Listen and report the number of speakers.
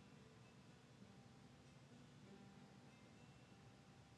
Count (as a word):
zero